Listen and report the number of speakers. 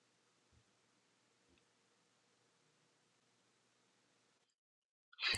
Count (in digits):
0